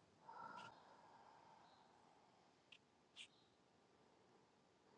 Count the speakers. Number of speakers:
zero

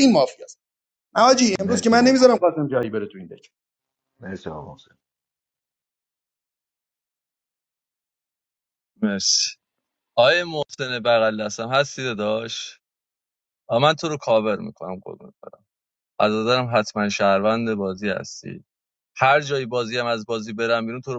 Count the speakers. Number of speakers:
three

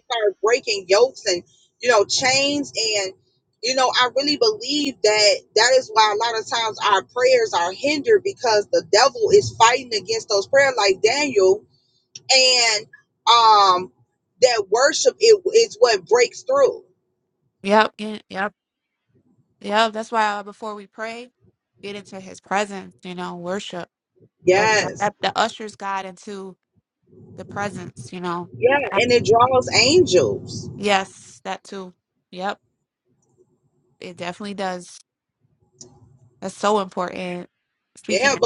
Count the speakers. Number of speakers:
two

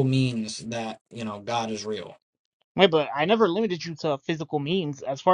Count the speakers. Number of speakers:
two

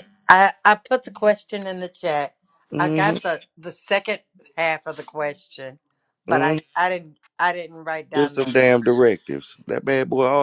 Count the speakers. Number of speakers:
two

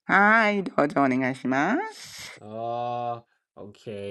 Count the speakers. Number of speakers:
two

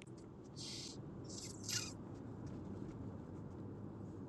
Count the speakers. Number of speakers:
zero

